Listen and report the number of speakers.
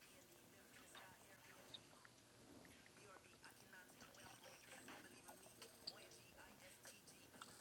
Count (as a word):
zero